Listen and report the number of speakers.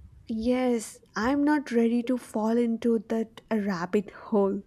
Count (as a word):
one